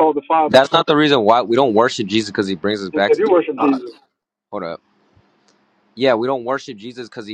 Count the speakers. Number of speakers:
2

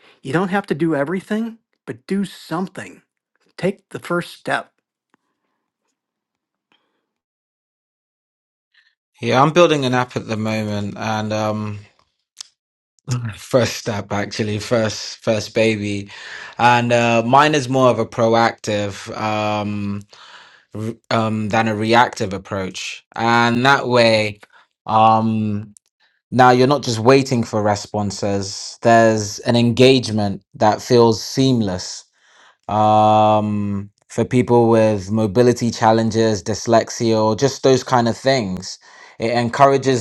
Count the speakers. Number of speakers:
2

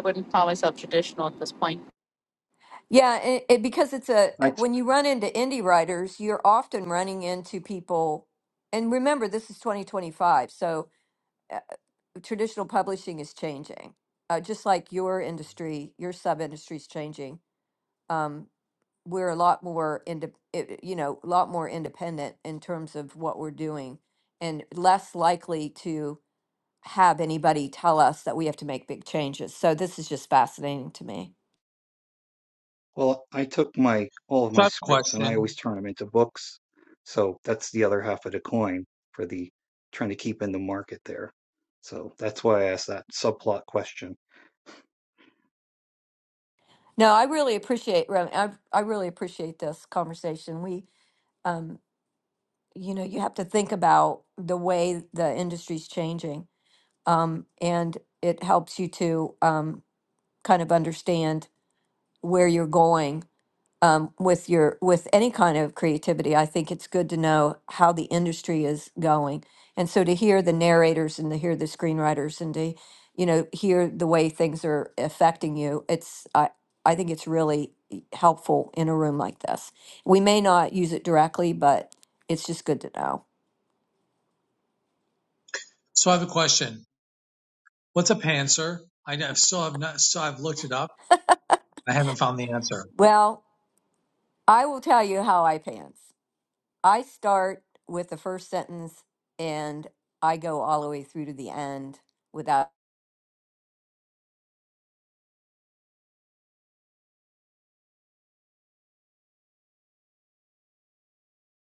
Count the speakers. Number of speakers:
4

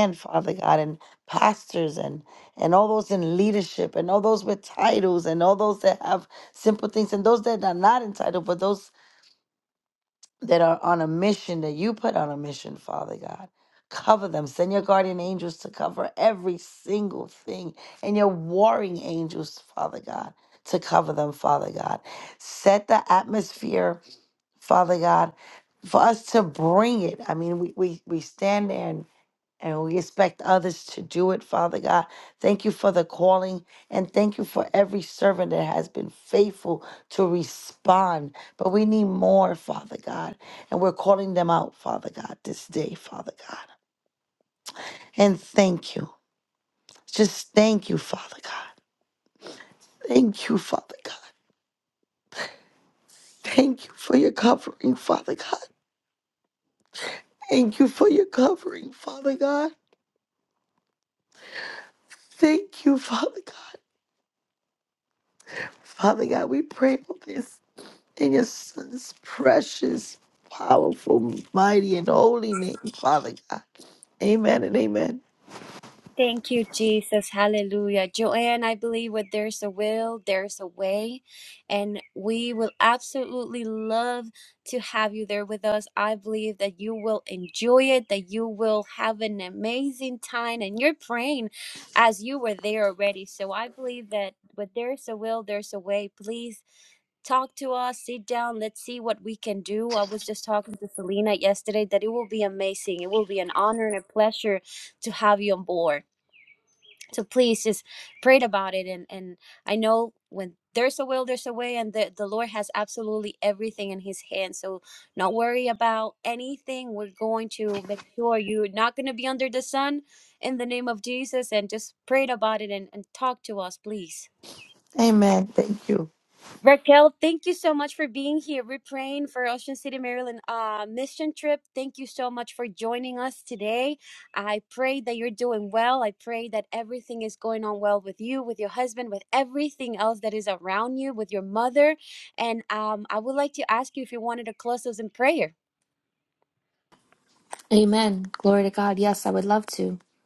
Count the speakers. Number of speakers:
3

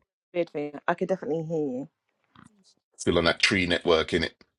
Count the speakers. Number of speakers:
2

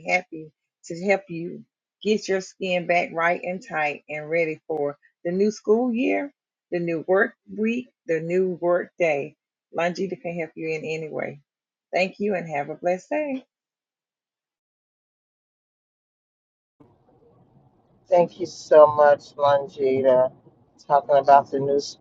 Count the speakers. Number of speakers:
2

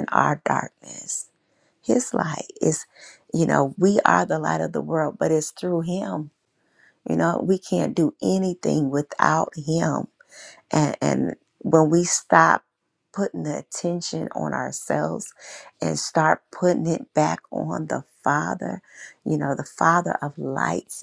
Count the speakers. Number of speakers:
1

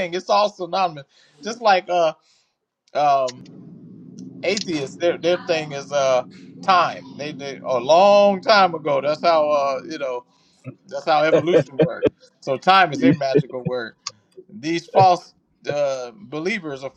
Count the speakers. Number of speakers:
1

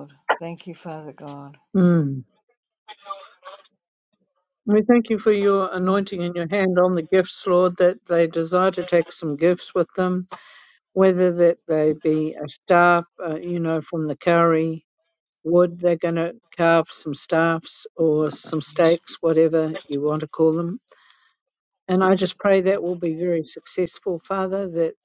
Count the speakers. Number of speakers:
2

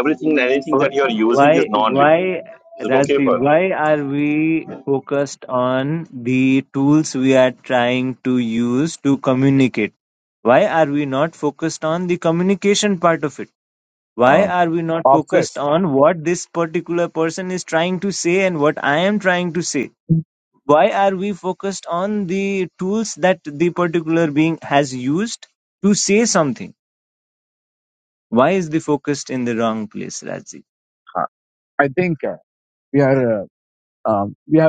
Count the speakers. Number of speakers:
3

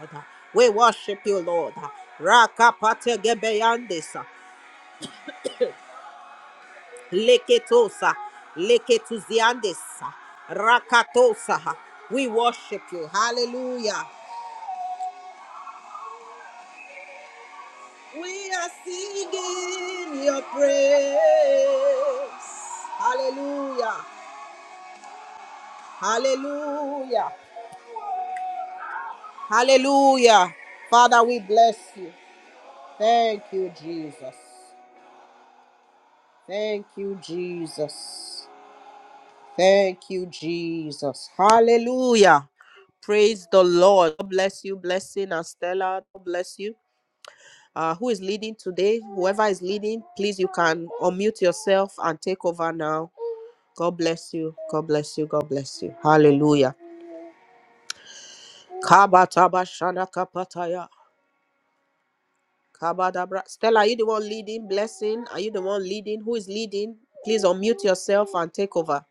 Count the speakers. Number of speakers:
1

